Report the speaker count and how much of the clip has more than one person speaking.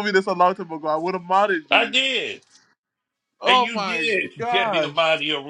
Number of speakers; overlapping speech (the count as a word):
two, about 31%